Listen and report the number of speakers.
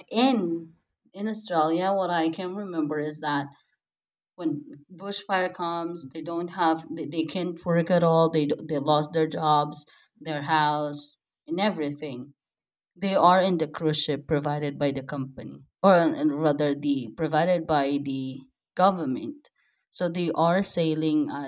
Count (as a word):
one